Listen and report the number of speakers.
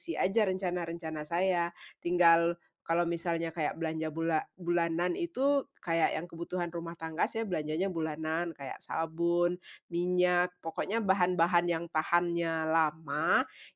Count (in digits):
1